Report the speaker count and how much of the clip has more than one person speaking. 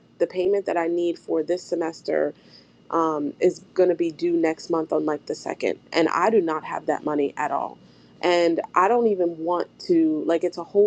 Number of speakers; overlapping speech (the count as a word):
one, no overlap